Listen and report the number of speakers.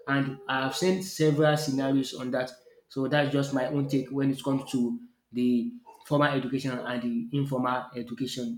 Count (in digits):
1